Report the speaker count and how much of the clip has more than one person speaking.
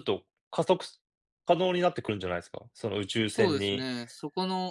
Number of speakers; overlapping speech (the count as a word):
two, about 11%